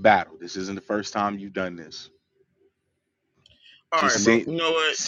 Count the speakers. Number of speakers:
2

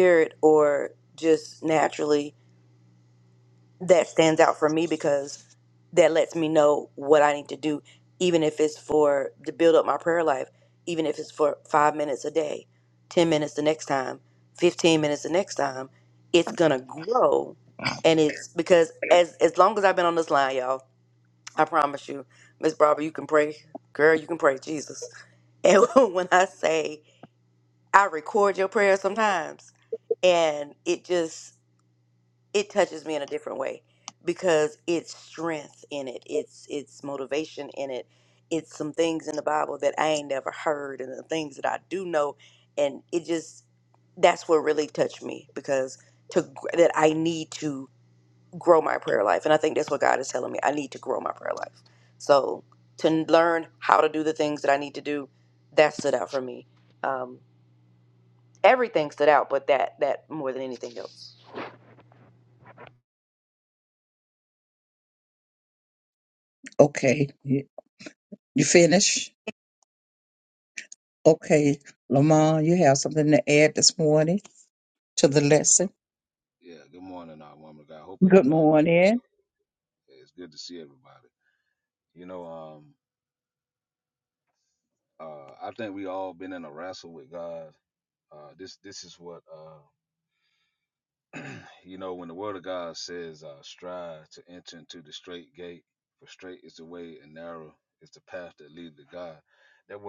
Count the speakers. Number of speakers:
3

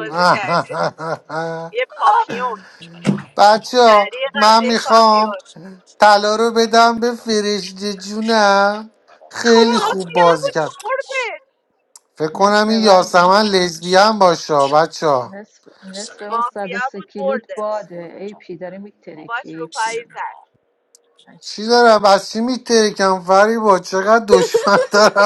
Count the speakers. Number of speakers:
3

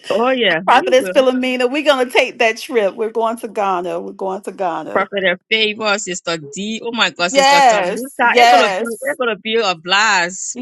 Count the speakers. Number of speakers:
2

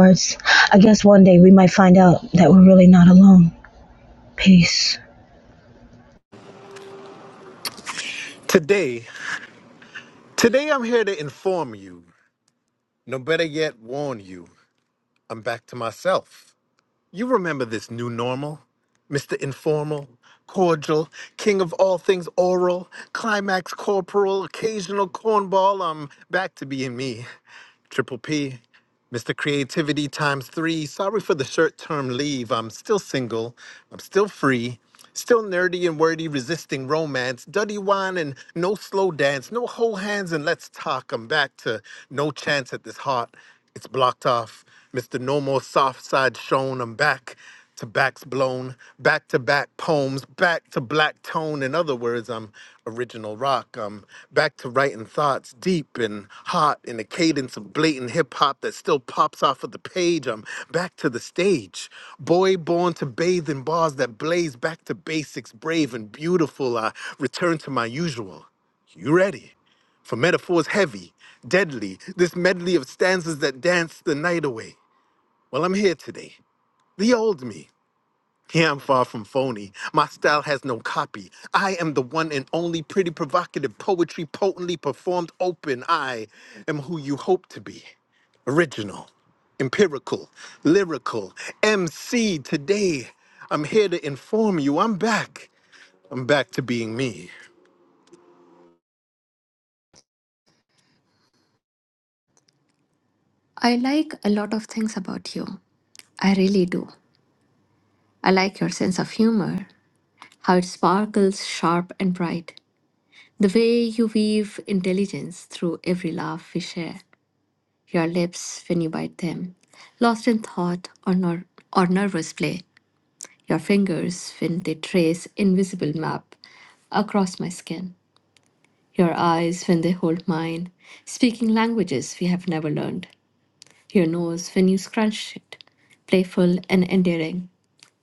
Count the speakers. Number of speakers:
3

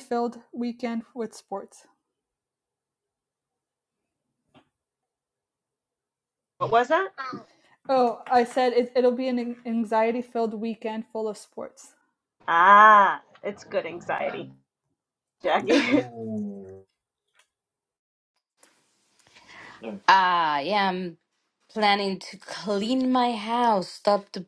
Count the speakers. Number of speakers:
3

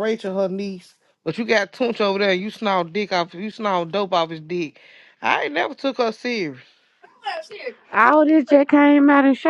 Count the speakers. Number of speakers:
2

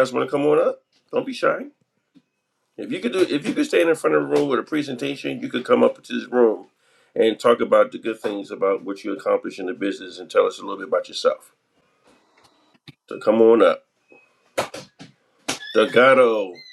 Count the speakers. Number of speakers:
1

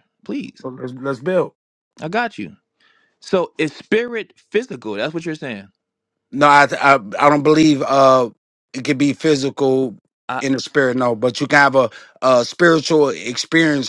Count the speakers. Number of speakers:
2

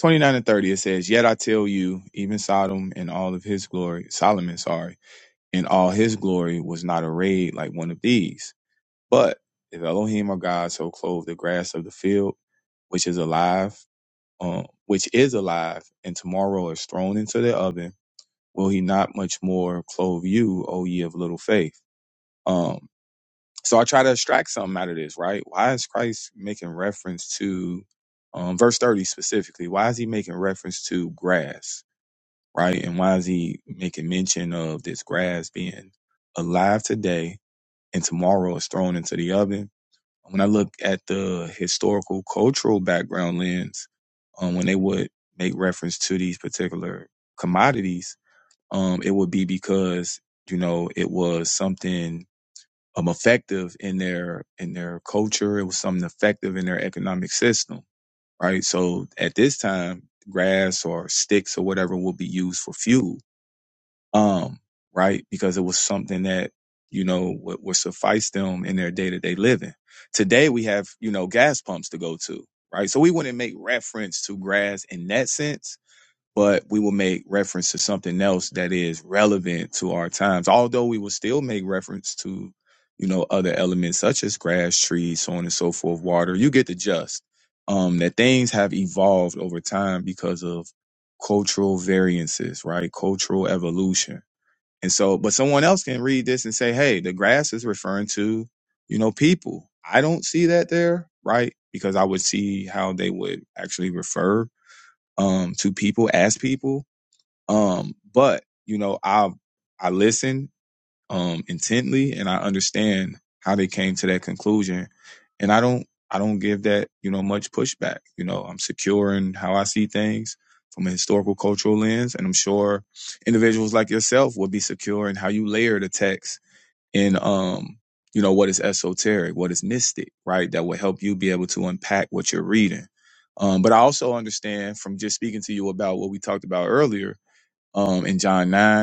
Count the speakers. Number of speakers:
1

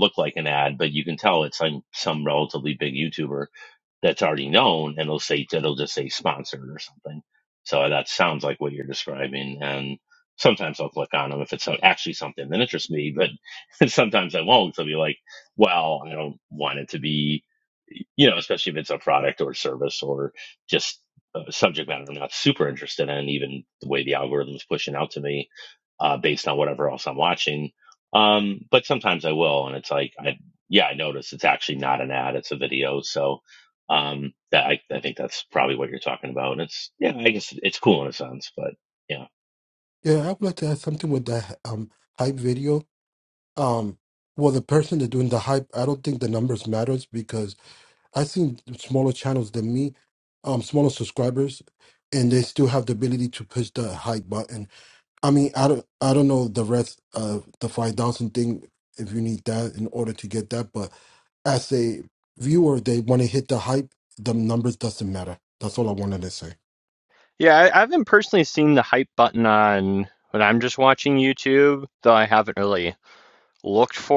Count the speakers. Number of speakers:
3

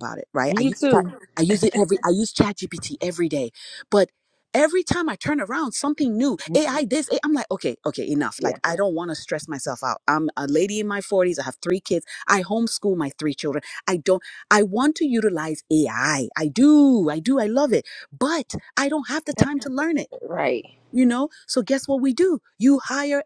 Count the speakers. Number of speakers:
2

